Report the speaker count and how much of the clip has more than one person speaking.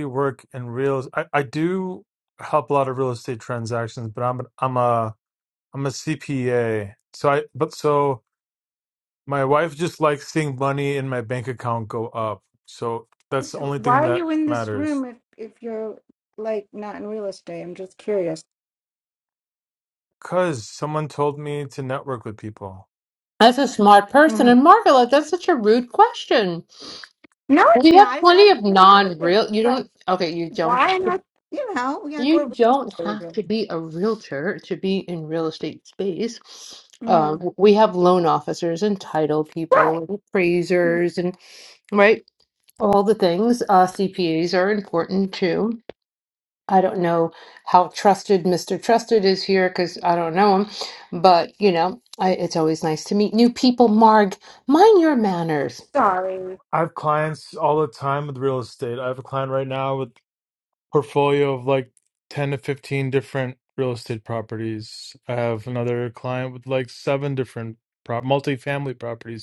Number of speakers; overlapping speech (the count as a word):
three, about 9%